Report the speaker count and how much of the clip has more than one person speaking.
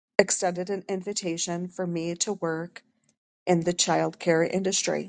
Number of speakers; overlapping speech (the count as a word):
one, no overlap